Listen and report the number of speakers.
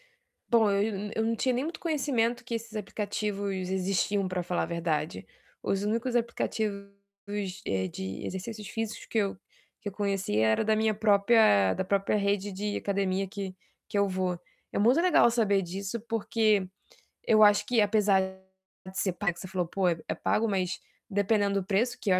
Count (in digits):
1